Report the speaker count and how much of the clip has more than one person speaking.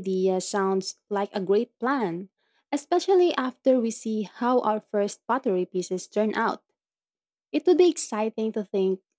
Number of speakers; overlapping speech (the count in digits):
1, no overlap